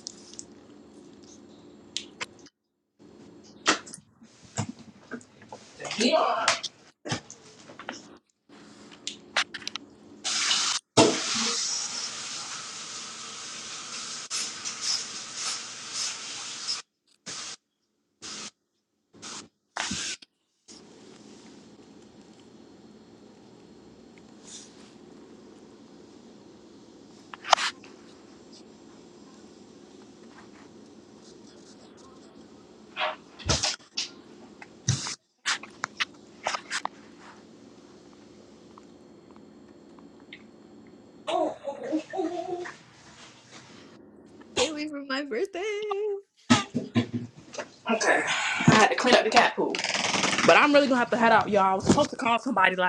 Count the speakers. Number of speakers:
2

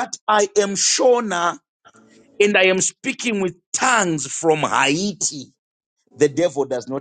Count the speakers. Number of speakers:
1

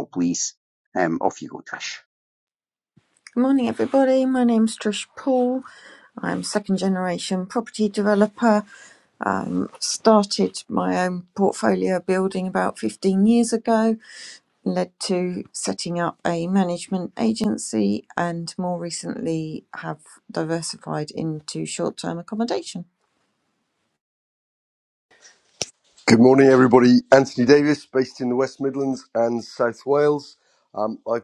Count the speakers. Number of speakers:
3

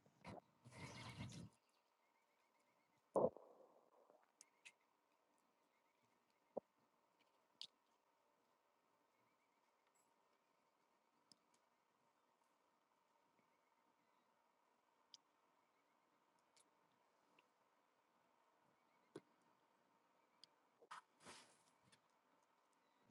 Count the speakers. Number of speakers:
0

